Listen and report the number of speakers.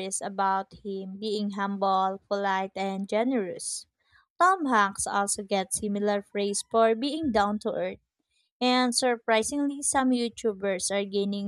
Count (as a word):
one